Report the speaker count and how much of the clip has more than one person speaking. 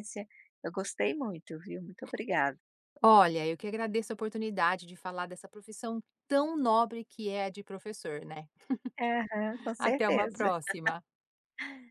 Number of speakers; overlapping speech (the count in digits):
2, about 6%